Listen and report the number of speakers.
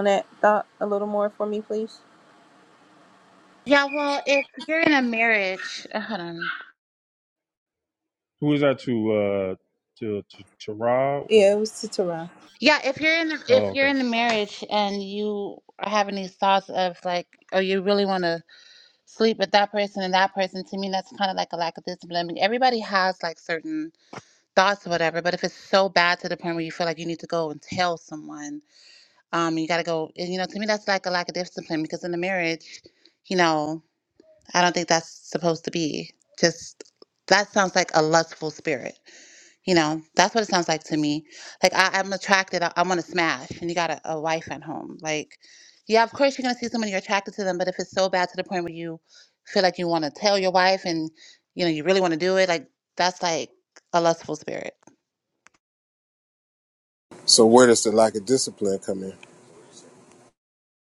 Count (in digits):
4